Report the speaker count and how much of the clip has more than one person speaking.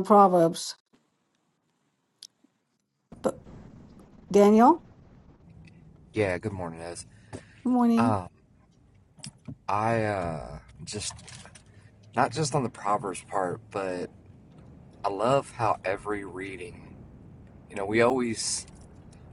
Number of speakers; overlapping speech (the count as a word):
two, about 1%